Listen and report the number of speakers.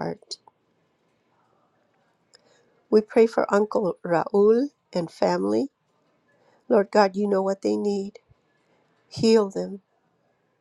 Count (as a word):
one